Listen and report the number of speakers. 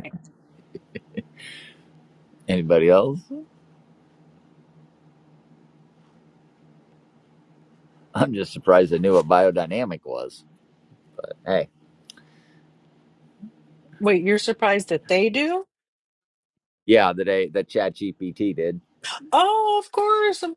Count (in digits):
2